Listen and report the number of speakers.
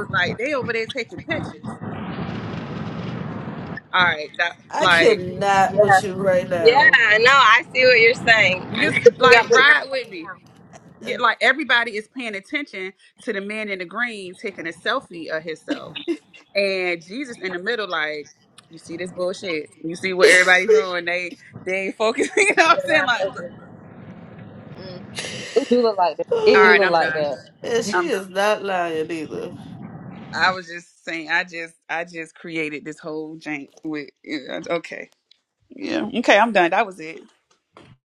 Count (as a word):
four